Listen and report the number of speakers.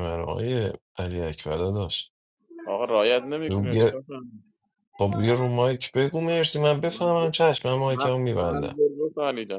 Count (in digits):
2